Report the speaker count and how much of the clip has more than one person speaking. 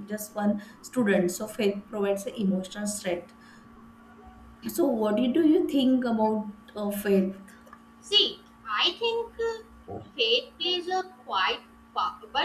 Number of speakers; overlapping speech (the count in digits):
2, no overlap